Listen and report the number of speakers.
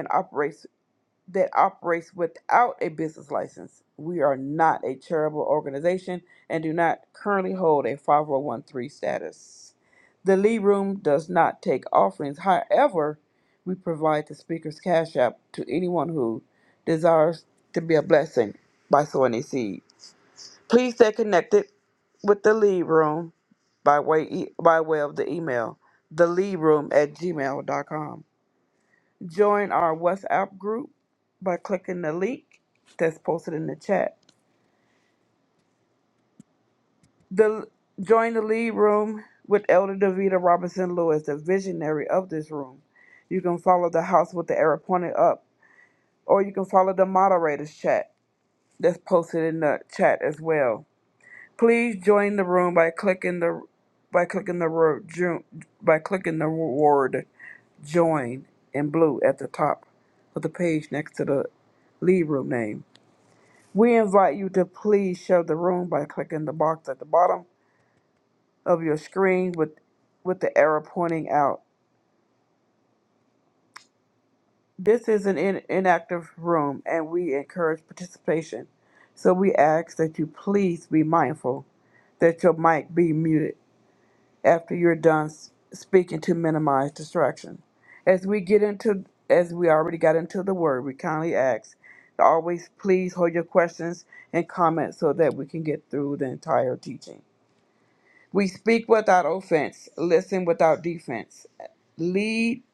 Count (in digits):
1